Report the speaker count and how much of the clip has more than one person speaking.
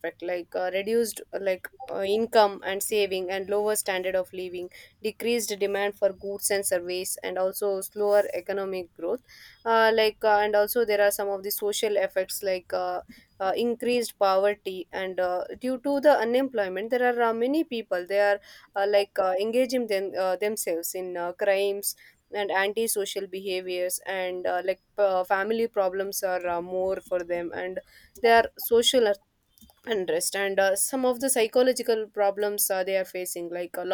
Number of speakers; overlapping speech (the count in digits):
1, no overlap